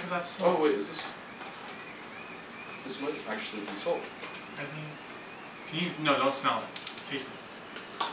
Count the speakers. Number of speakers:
two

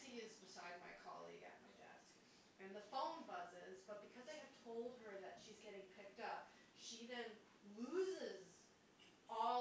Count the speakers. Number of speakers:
one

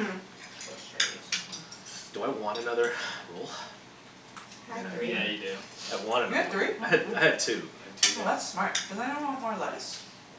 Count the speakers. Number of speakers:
four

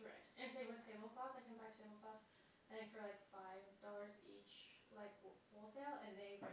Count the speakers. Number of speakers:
one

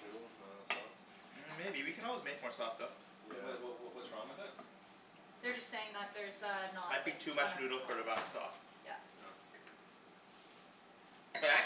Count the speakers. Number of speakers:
four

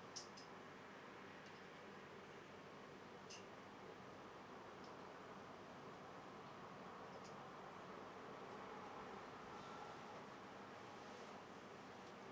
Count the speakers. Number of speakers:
zero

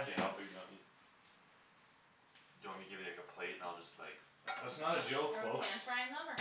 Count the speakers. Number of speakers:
three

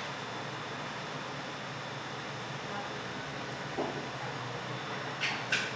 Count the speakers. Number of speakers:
zero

